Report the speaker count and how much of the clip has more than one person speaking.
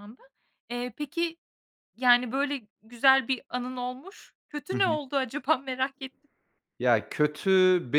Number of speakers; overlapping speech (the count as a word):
two, about 3%